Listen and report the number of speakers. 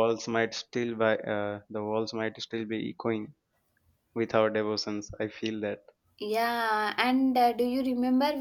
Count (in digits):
2